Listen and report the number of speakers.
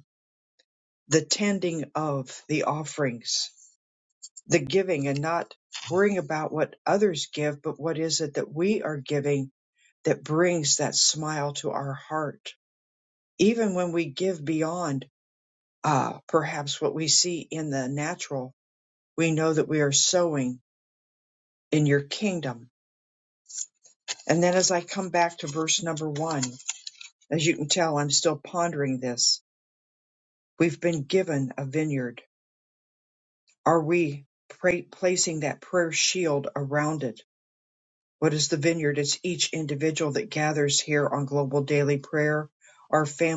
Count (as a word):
one